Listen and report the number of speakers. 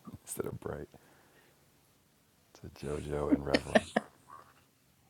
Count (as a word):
one